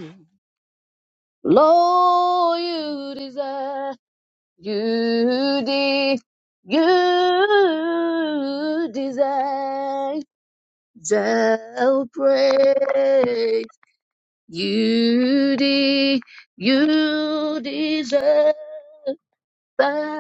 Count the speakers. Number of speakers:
1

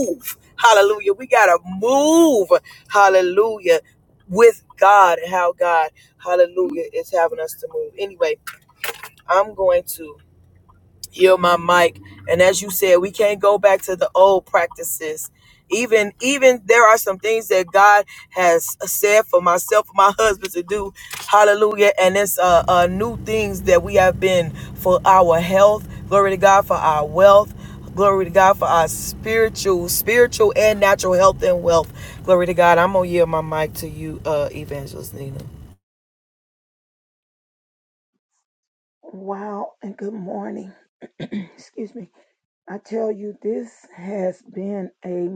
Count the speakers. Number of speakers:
2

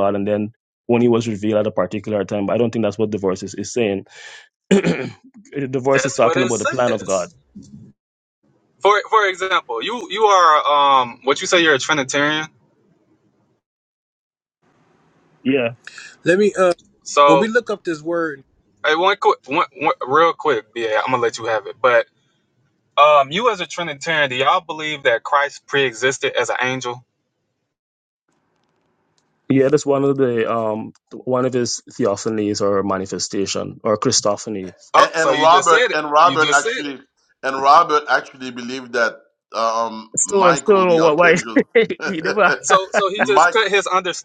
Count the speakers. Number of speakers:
4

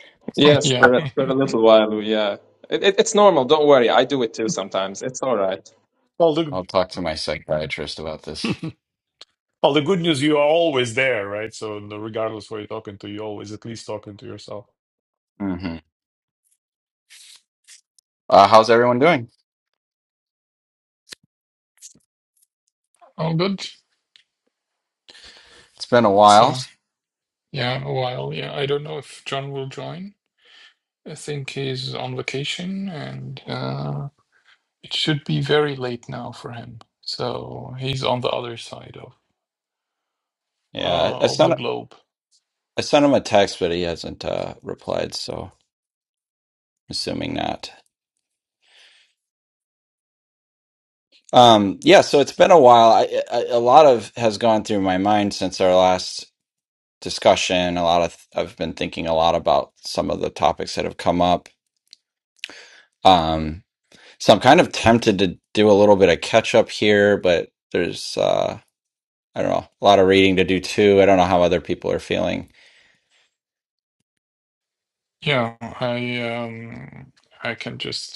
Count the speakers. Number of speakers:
4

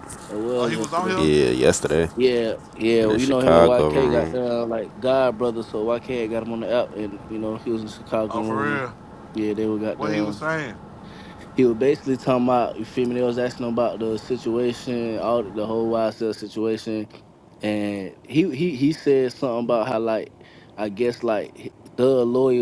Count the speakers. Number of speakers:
3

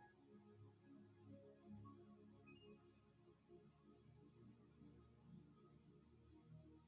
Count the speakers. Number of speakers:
0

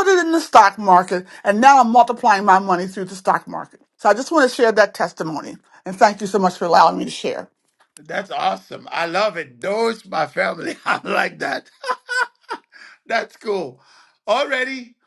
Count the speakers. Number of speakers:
2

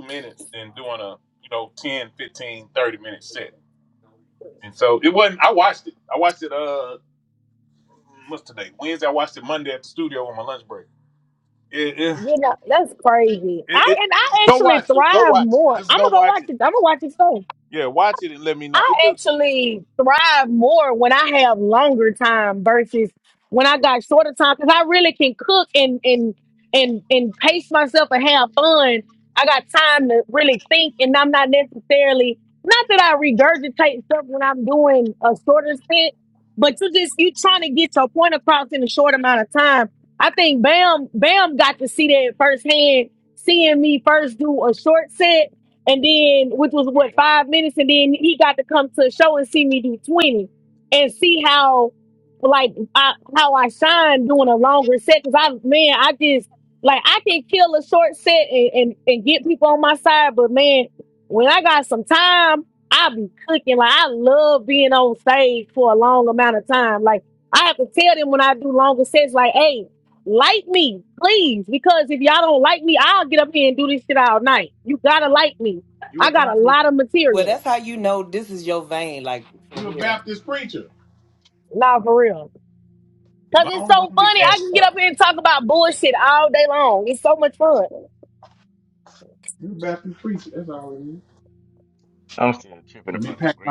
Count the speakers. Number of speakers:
4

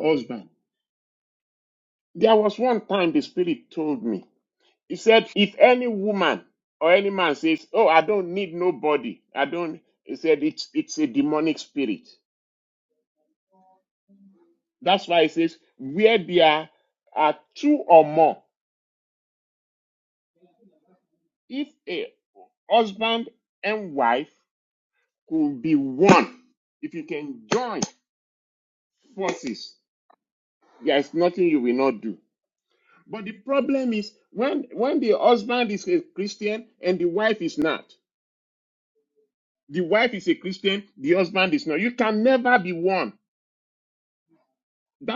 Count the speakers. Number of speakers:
1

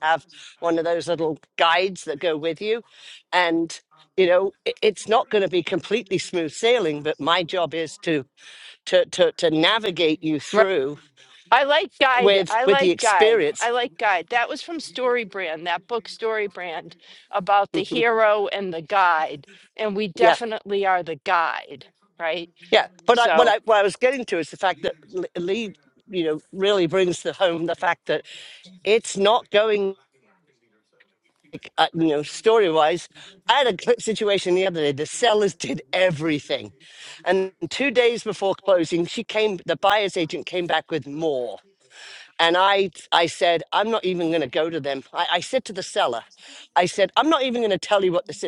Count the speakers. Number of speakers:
2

